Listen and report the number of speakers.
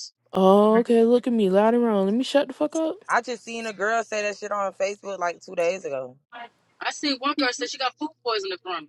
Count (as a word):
three